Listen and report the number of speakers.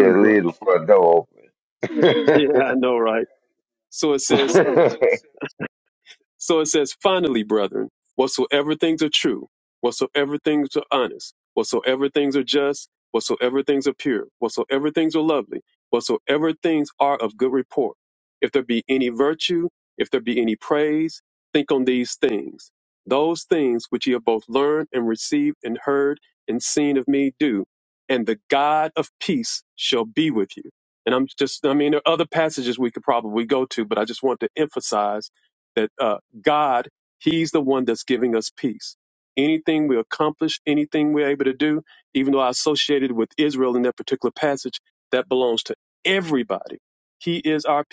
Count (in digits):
2